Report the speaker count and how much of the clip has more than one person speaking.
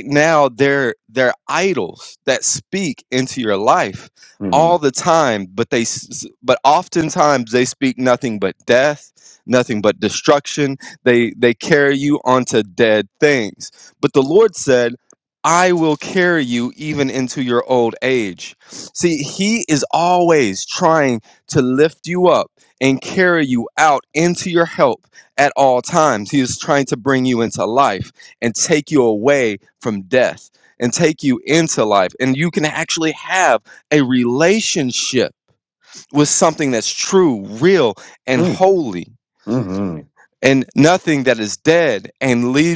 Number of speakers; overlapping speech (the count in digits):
2, about 1%